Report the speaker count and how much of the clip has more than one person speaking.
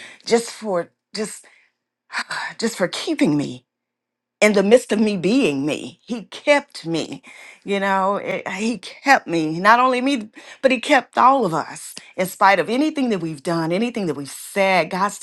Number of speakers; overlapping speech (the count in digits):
1, no overlap